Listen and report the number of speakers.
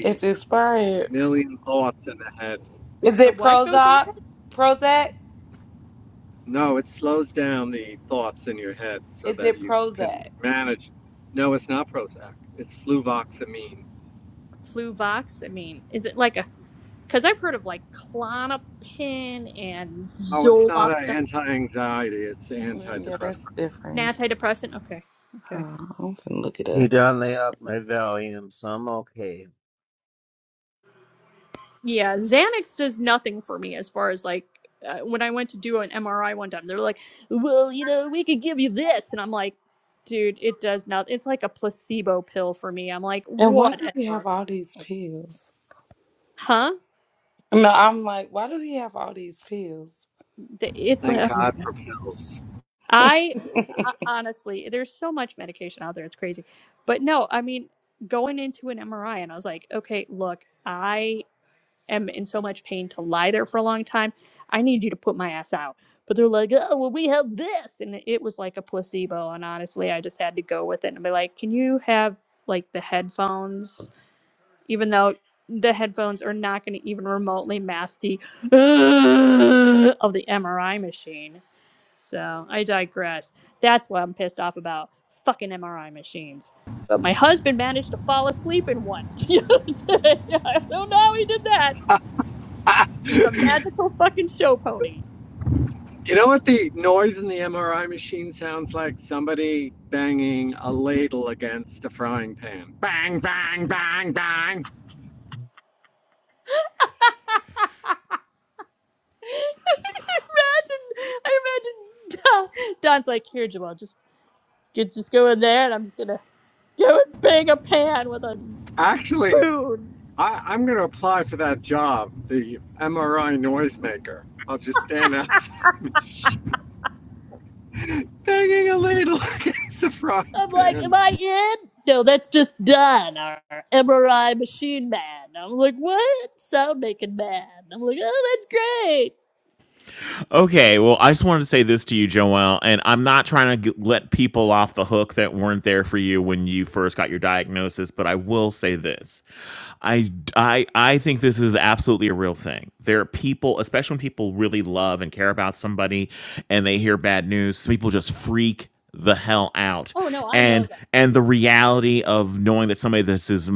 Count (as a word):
five